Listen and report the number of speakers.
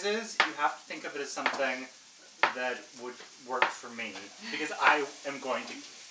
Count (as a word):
one